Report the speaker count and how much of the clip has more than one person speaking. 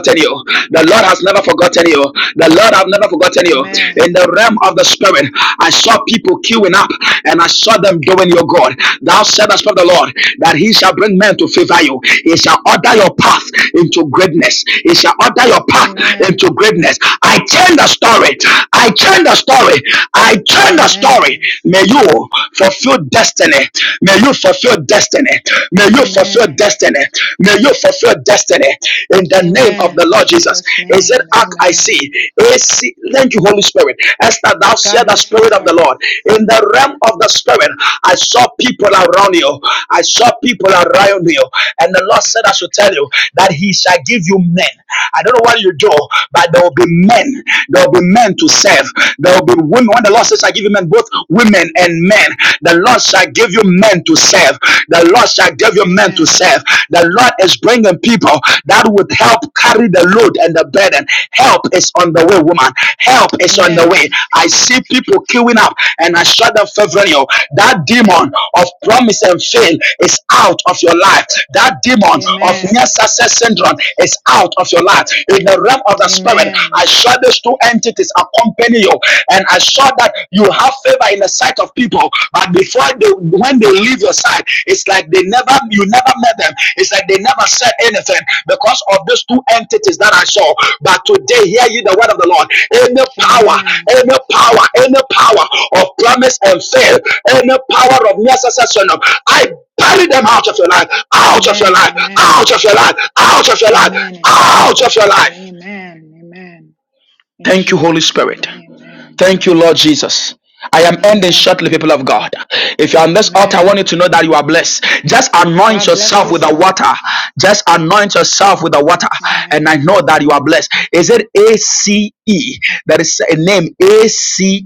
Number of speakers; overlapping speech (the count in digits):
2, about 13%